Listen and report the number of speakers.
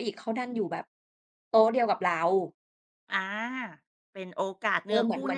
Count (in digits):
2